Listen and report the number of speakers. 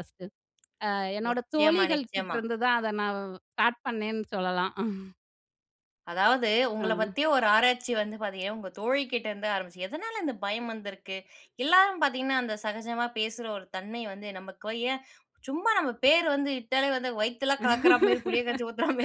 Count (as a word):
two